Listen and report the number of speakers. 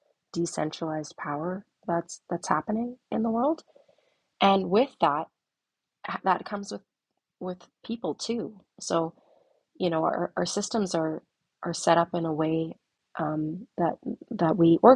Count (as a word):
one